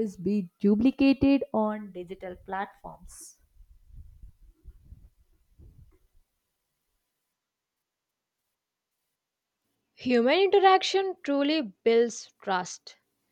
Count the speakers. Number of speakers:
2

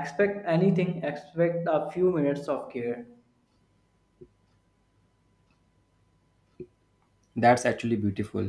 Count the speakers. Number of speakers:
2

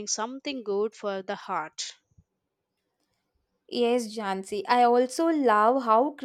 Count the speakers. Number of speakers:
2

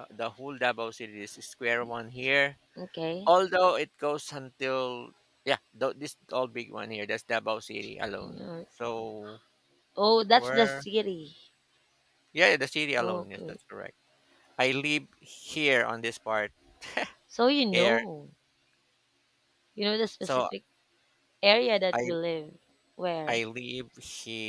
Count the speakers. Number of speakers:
2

